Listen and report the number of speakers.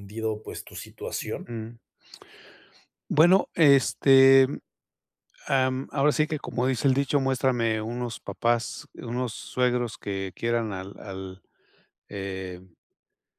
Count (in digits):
2